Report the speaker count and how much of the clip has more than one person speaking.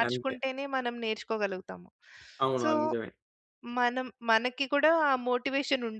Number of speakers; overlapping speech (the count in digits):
2, about 8%